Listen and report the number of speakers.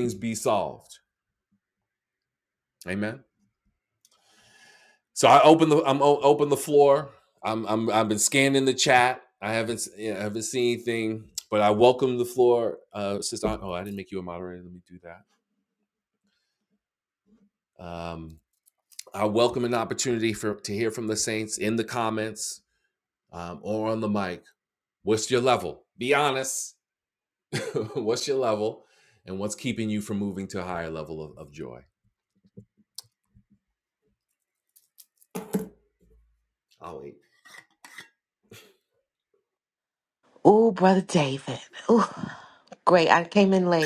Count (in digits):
2